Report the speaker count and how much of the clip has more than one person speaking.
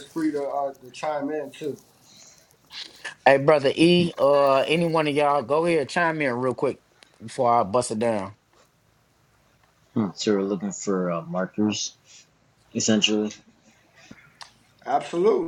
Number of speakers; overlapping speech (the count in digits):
3, no overlap